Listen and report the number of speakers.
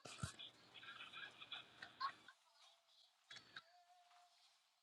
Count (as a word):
zero